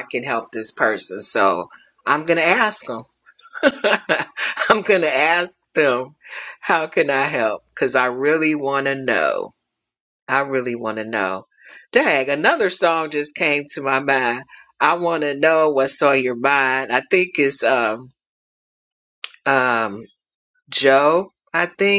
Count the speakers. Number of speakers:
1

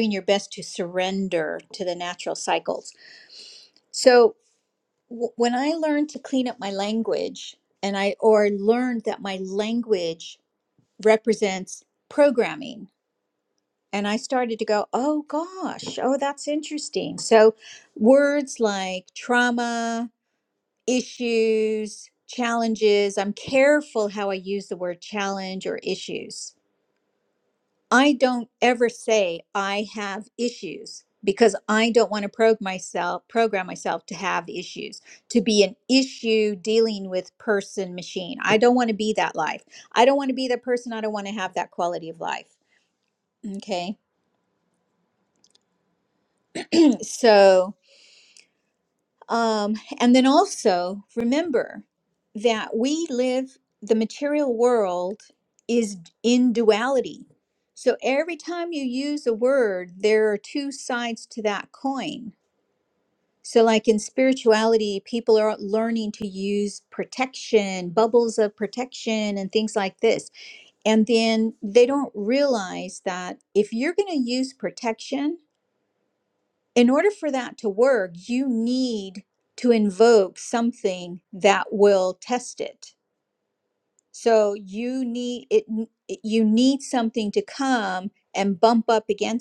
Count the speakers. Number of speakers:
1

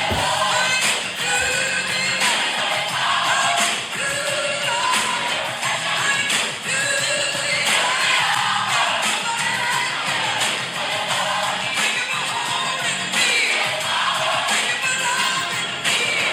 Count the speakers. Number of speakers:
0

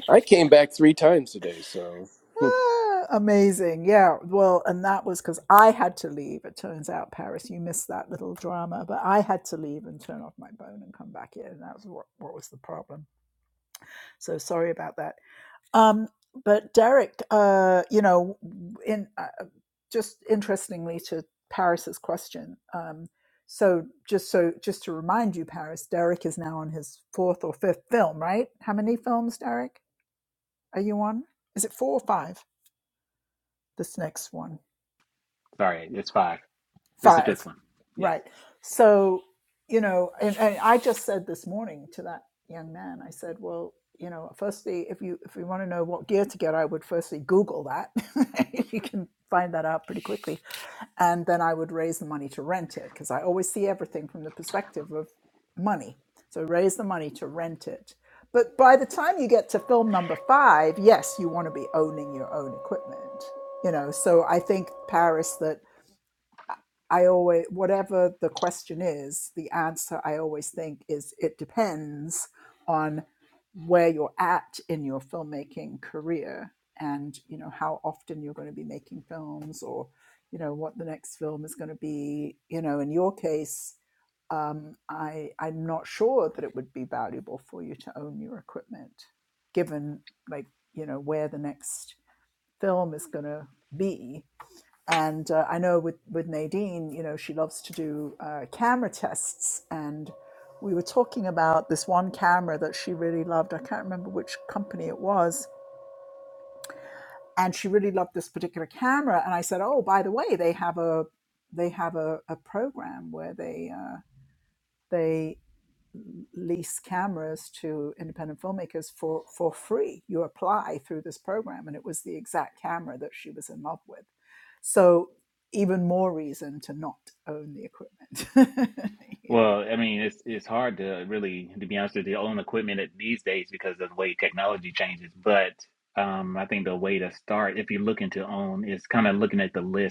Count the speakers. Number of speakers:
3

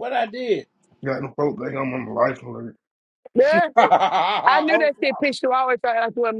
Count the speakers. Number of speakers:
3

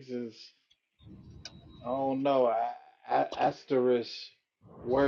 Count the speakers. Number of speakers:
1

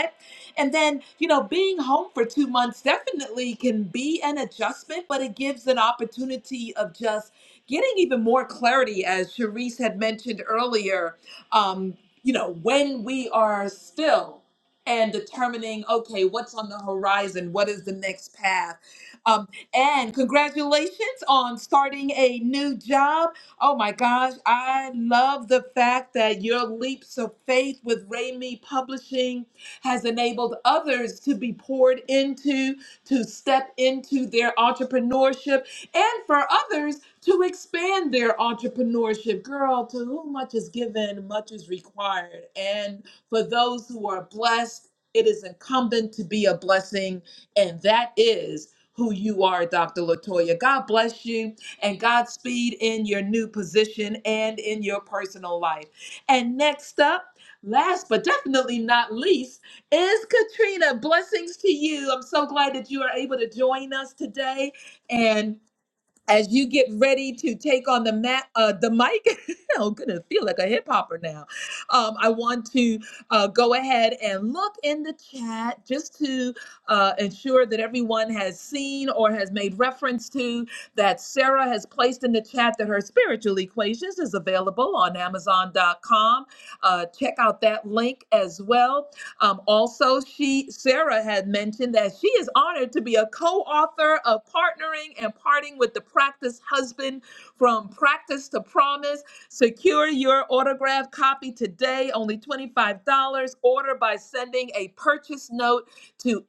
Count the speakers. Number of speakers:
1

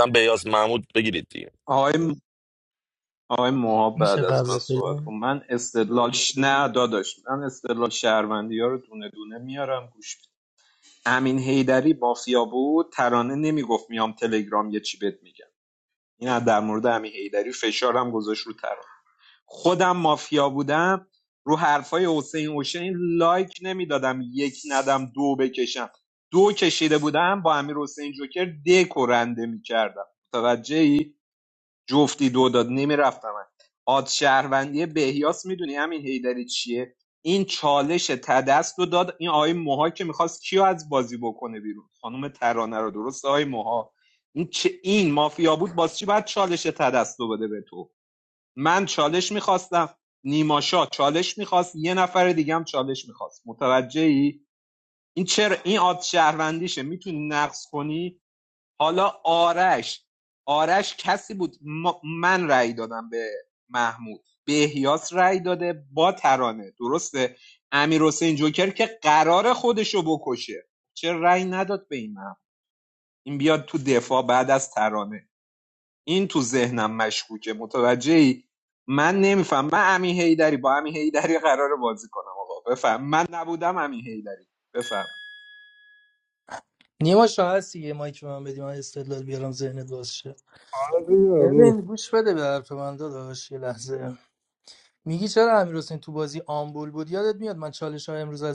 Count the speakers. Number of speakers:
4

